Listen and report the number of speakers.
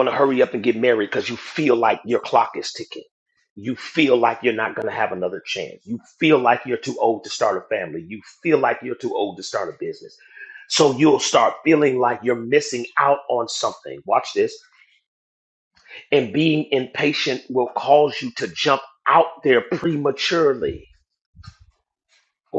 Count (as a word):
one